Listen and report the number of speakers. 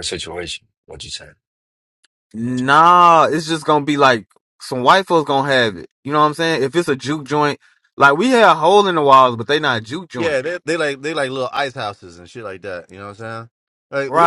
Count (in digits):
3